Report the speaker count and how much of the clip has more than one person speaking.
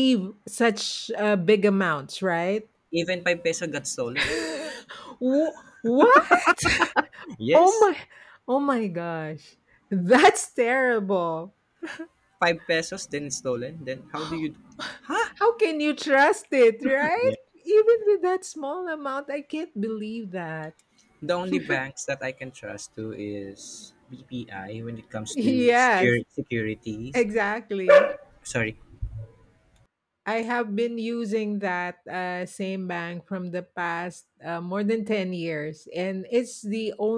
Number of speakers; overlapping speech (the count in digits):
2, about 4%